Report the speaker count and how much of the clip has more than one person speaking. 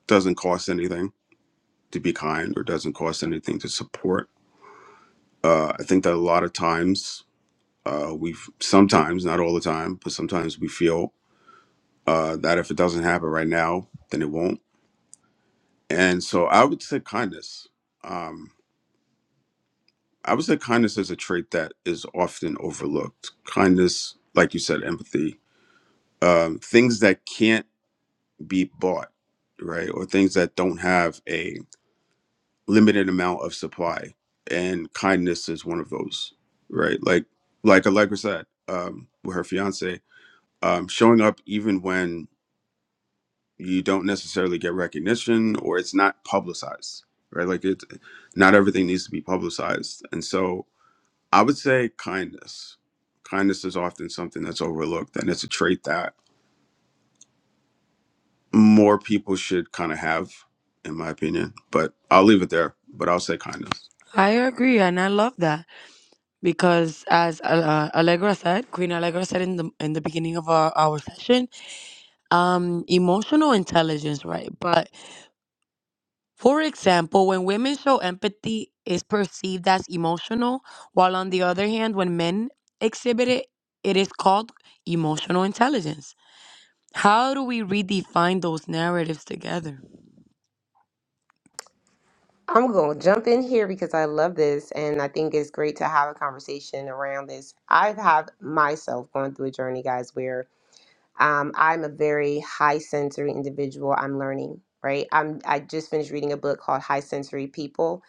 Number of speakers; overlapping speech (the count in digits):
3, no overlap